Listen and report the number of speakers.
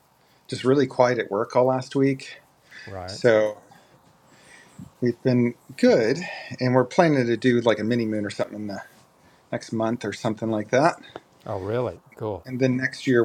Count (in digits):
2